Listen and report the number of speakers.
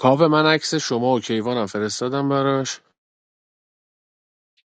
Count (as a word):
one